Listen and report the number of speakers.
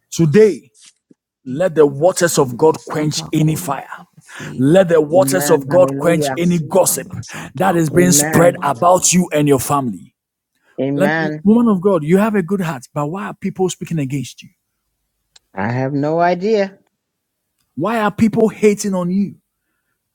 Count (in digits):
3